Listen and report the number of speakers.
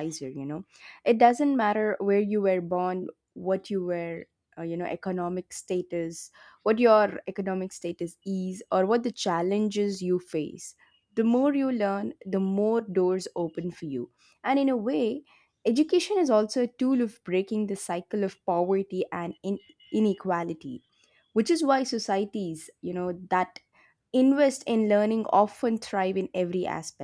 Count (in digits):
1